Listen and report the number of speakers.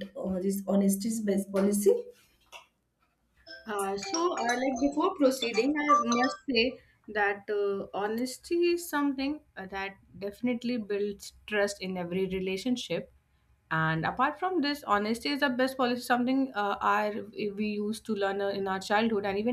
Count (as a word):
two